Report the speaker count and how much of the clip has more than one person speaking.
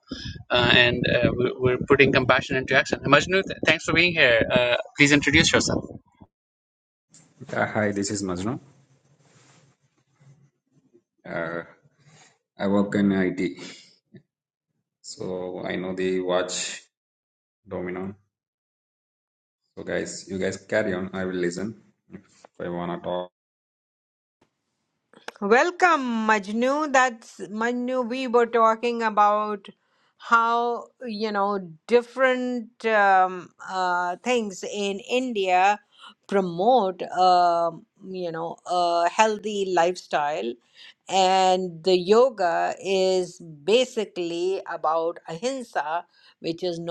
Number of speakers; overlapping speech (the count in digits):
3, no overlap